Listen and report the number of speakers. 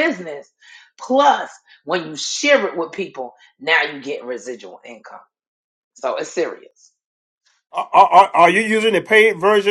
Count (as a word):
two